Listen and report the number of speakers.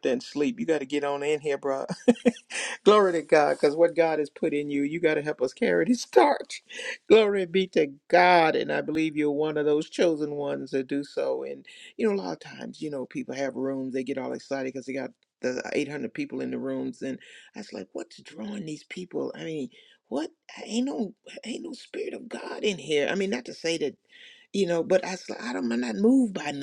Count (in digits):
1